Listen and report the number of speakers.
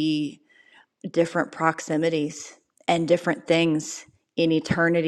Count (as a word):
one